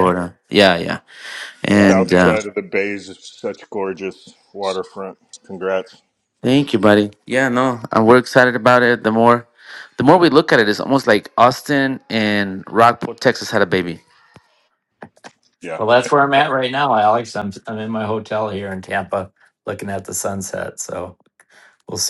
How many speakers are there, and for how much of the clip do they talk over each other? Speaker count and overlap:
3, about 4%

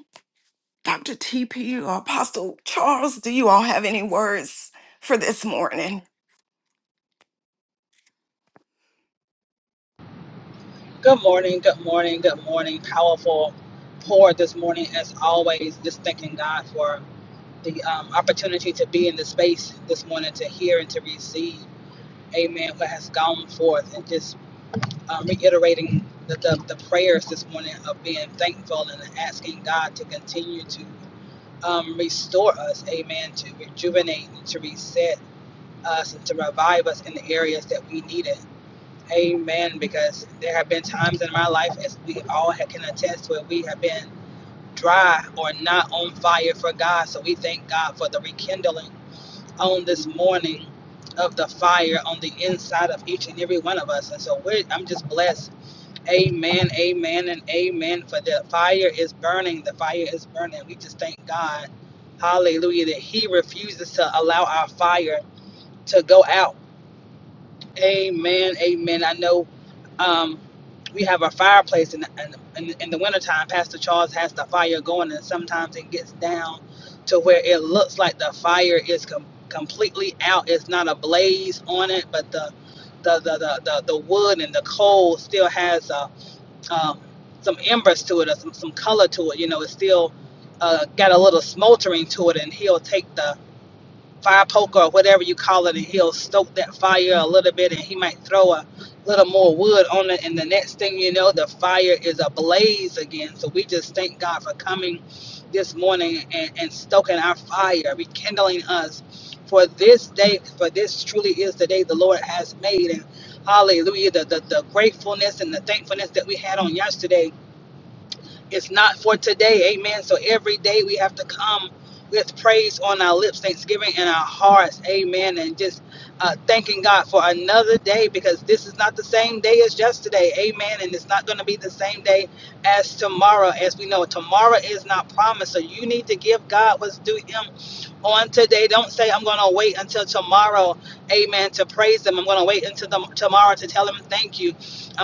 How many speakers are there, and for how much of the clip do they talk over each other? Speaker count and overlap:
2, no overlap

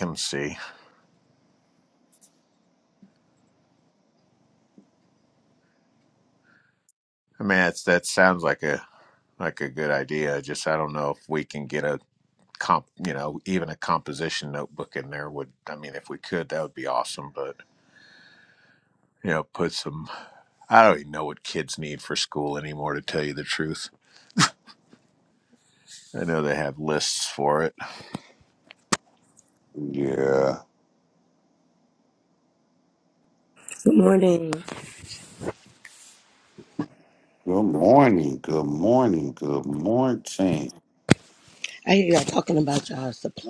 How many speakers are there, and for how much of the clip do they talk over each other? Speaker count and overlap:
3, no overlap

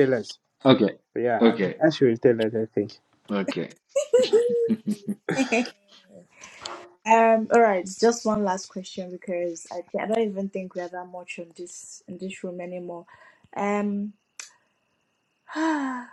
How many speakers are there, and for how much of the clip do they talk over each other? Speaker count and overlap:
3, about 2%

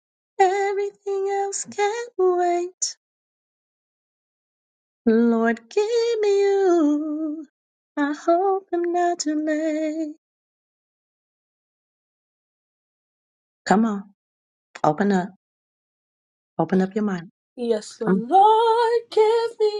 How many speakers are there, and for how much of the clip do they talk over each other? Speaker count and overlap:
2, about 1%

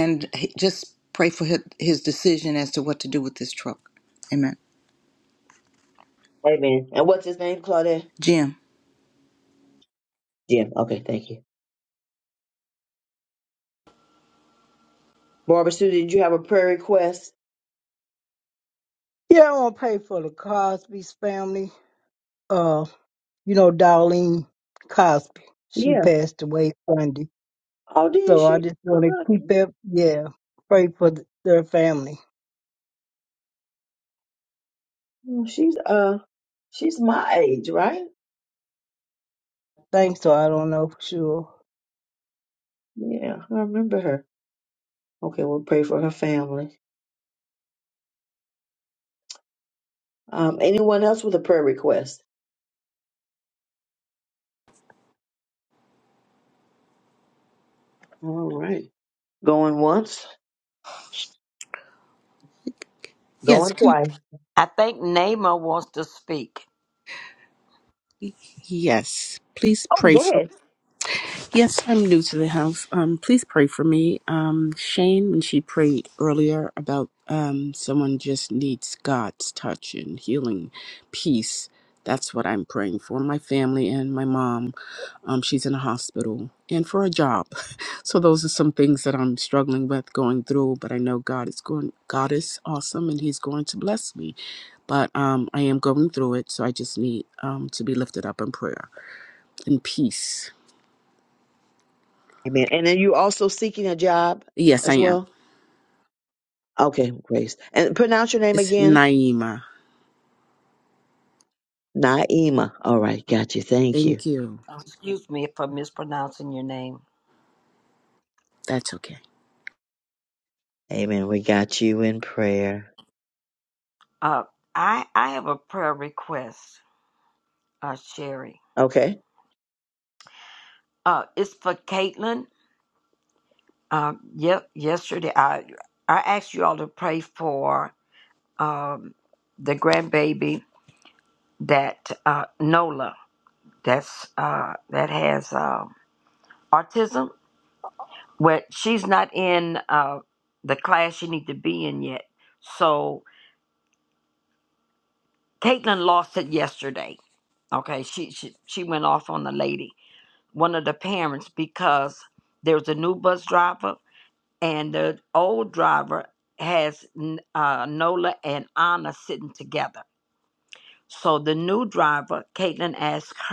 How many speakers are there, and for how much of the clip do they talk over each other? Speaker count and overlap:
5, about 2%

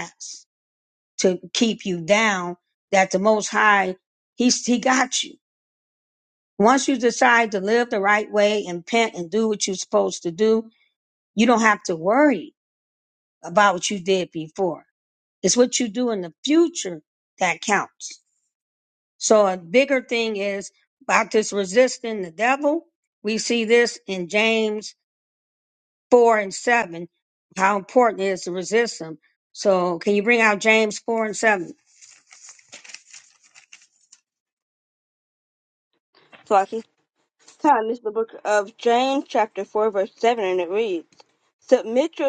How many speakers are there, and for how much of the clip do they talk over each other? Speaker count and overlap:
2, no overlap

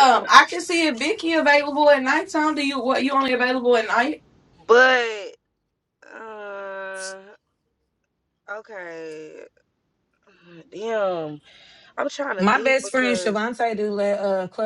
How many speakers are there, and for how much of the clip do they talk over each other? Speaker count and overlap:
3, about 8%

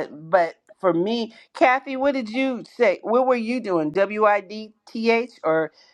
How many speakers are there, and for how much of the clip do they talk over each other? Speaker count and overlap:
1, no overlap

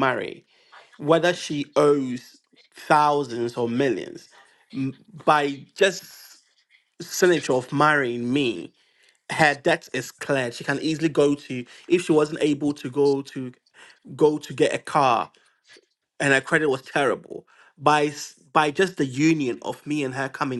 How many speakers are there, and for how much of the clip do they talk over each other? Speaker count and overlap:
1, no overlap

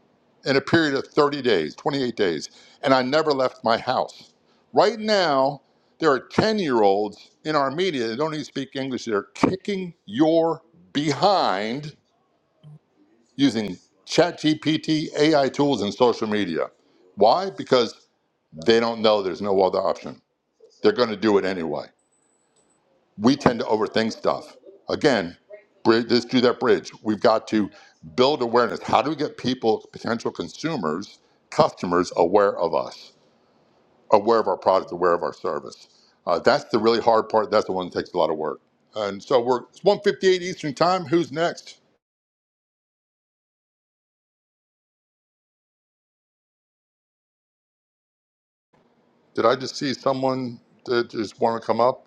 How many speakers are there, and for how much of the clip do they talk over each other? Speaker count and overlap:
1, no overlap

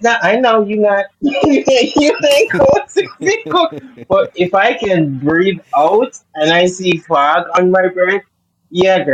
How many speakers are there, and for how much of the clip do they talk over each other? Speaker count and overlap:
1, no overlap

